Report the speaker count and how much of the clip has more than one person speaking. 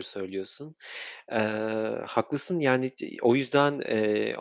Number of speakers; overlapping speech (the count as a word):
one, no overlap